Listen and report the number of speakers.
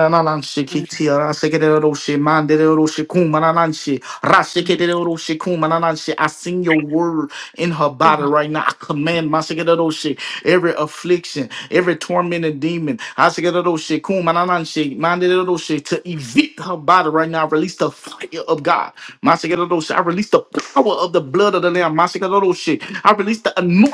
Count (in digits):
1